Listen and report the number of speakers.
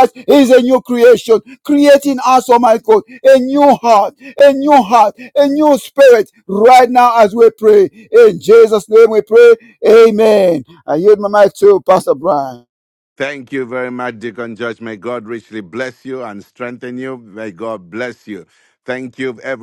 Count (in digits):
2